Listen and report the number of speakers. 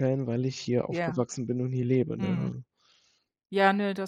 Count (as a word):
two